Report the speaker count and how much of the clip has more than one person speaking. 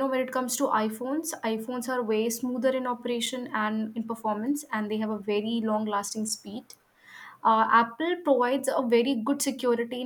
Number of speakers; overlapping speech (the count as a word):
one, no overlap